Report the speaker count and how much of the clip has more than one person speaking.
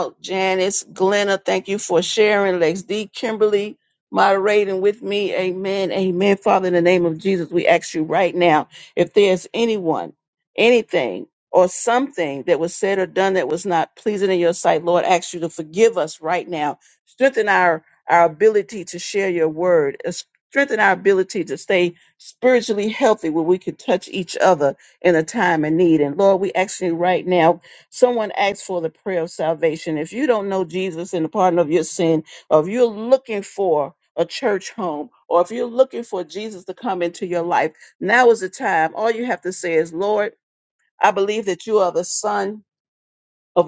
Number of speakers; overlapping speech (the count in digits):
1, no overlap